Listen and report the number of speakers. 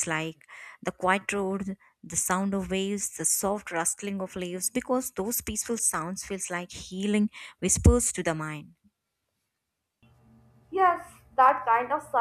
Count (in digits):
2